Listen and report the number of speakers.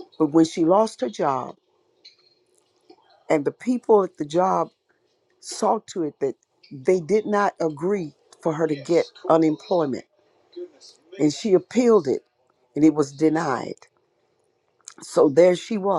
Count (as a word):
one